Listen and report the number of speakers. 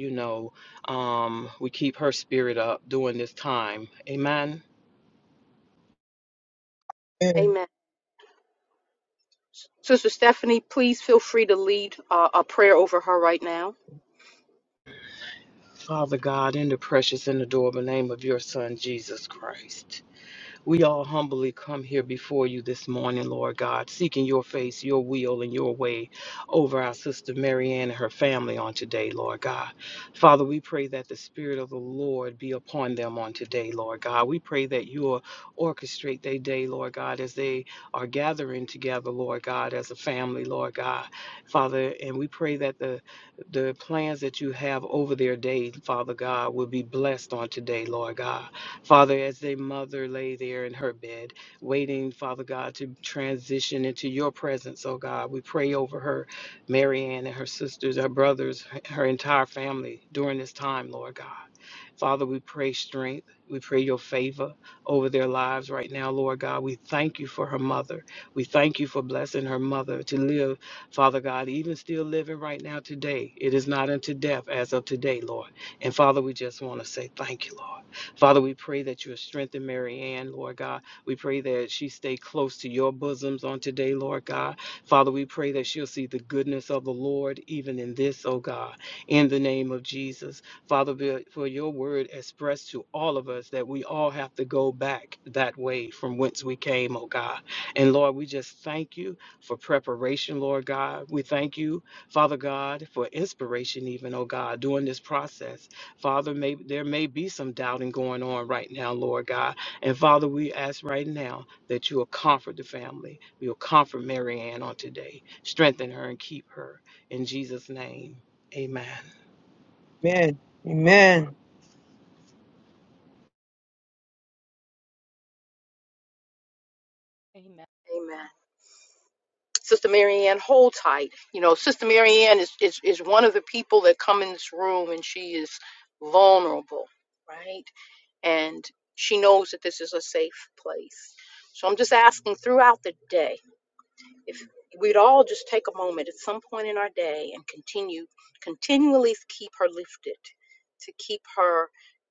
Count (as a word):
three